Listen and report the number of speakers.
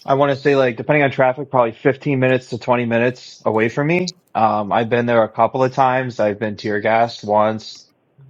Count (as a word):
one